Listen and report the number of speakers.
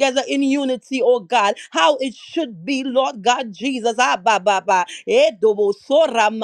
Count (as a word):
one